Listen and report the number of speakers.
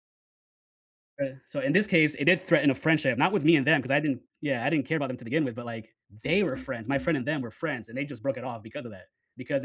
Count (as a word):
one